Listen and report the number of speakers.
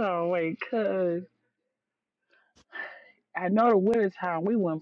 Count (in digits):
1